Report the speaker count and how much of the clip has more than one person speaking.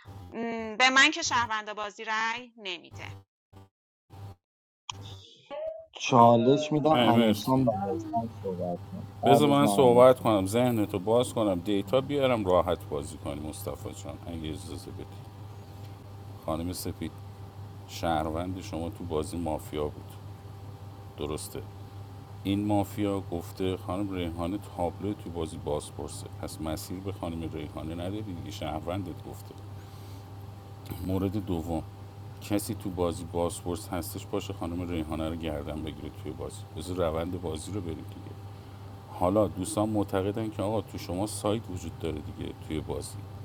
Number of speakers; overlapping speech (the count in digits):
3, about 4%